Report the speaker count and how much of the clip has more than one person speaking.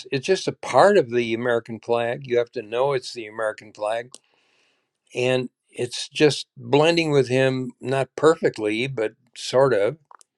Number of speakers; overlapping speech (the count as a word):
one, no overlap